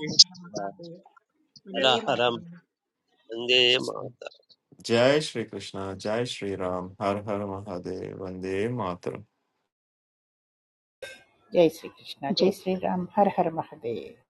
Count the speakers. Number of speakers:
4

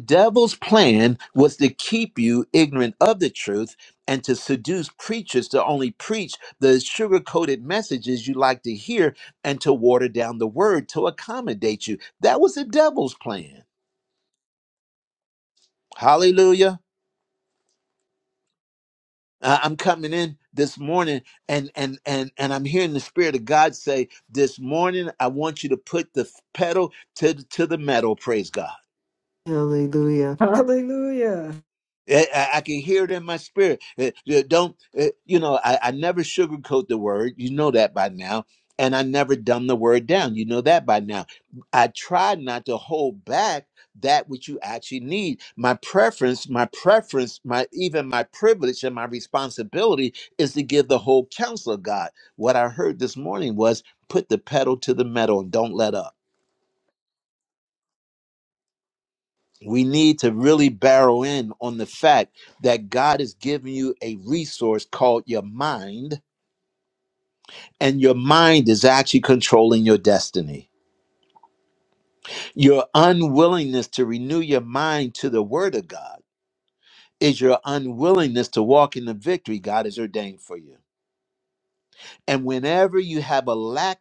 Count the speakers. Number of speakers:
2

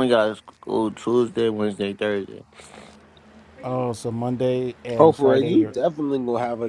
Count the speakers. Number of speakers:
3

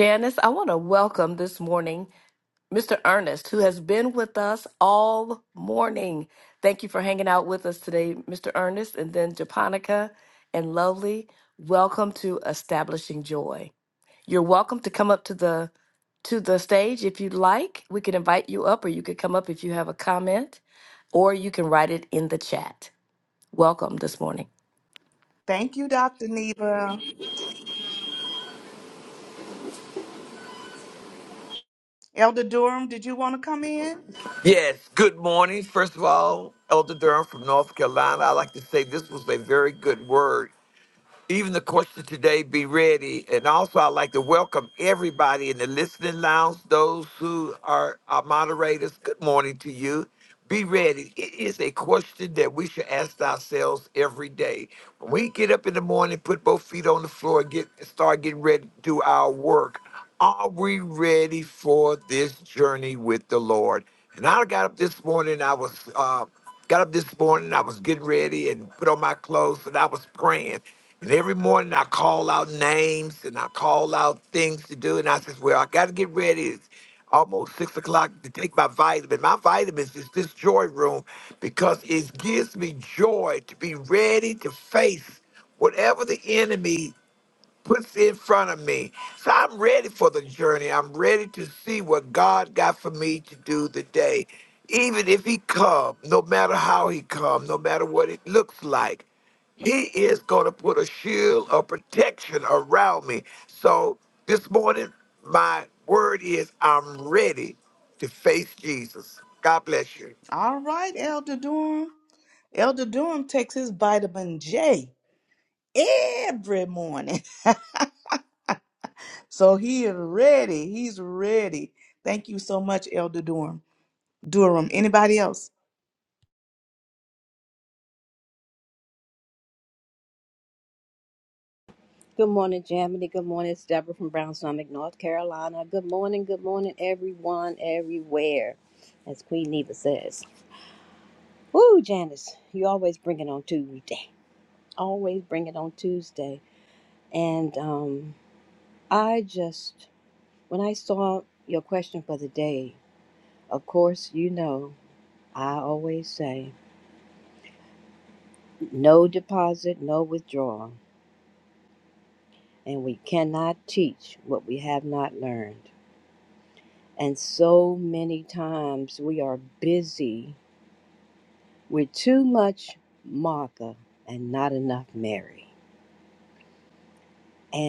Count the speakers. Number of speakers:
4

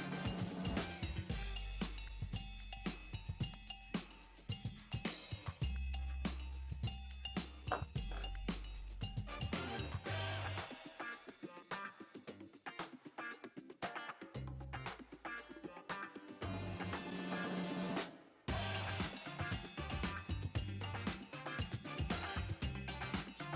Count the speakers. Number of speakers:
0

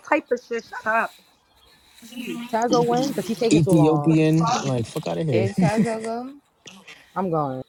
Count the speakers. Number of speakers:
4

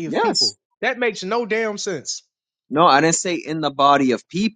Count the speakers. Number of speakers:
2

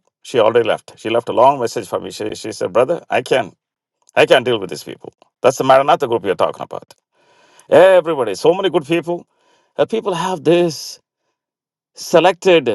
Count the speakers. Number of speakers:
1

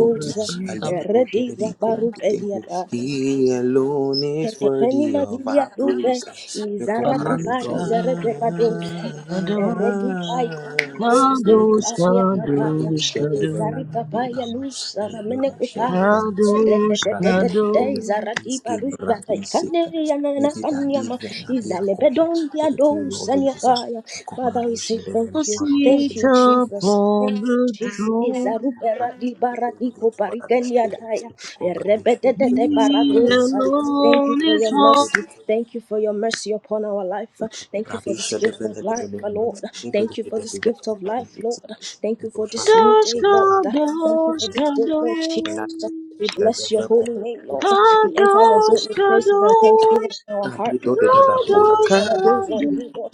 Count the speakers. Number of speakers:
3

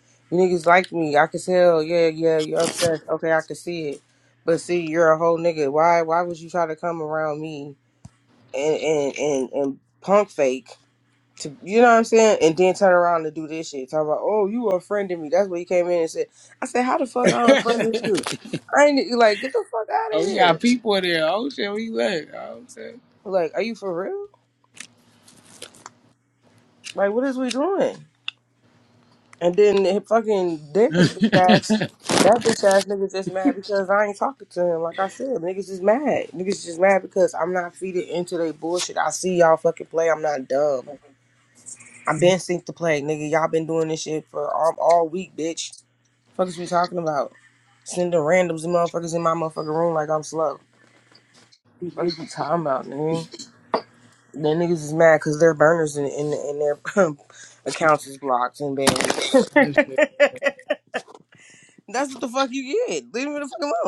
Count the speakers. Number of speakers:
2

